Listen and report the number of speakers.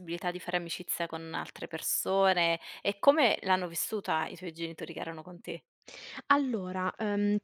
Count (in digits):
2